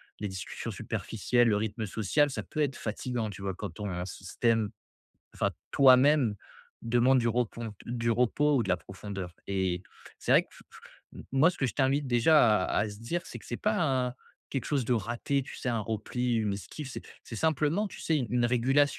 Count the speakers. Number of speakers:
one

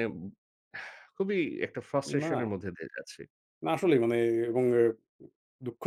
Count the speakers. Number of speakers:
two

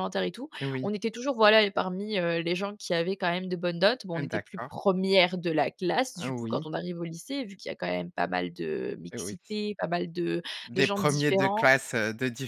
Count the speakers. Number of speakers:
two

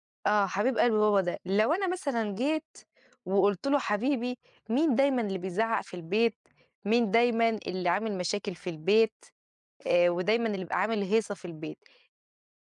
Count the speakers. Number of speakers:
one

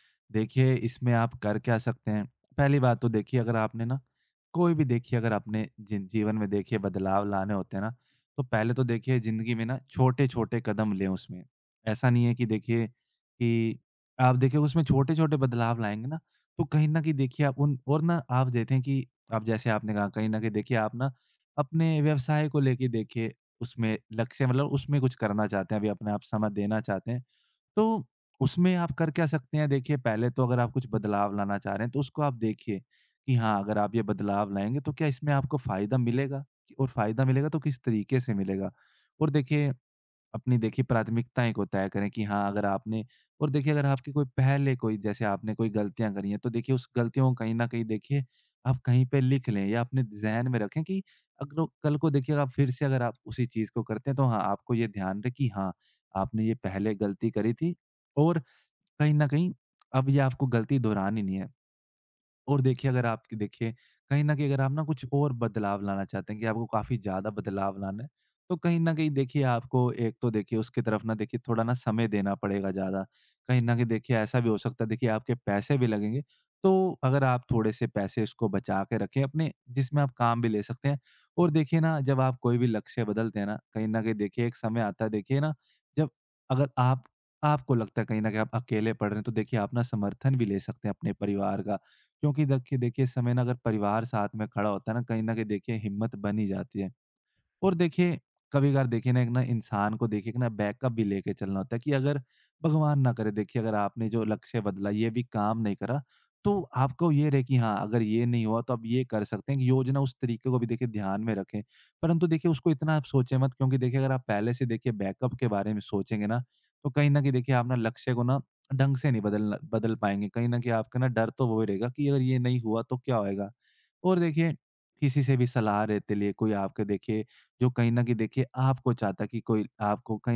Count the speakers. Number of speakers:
one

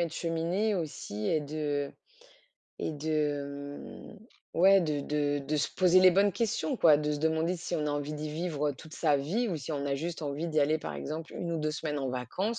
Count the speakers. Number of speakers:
one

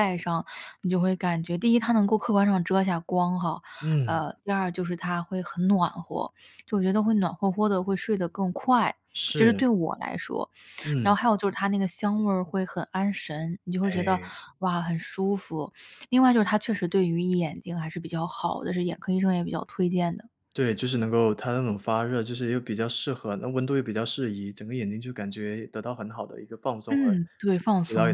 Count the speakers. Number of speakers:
two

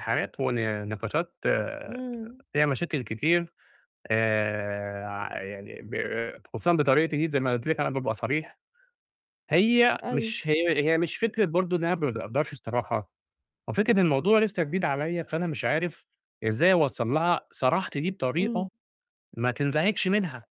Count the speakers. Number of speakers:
two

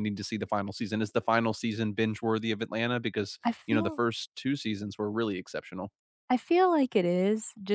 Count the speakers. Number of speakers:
two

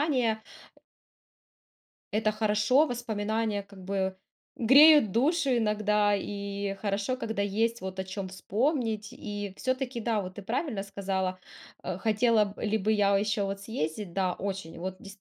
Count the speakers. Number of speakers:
one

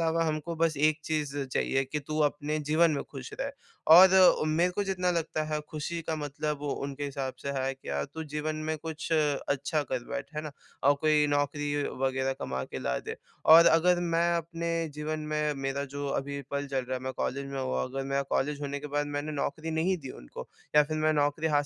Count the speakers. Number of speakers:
one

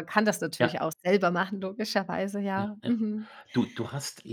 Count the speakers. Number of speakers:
two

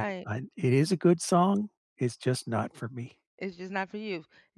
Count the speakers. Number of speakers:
two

